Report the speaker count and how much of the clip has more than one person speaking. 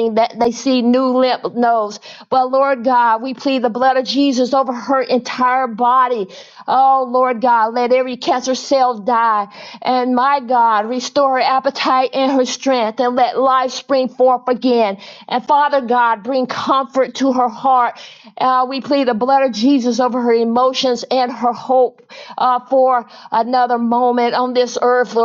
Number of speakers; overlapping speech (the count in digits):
1, no overlap